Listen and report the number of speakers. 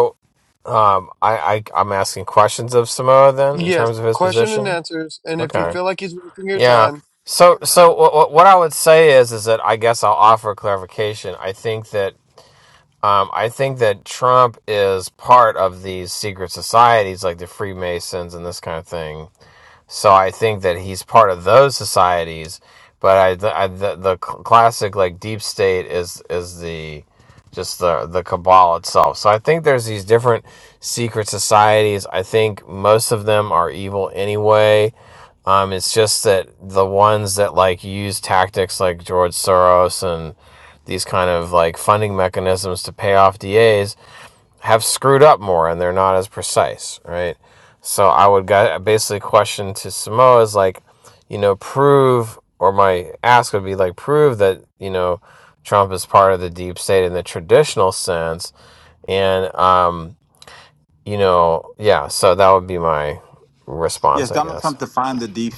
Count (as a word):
three